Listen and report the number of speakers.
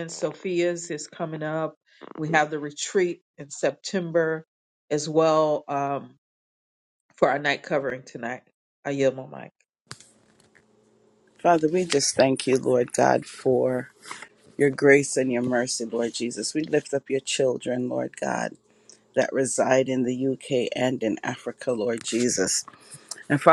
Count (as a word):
two